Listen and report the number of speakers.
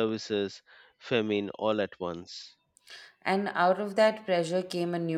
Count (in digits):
2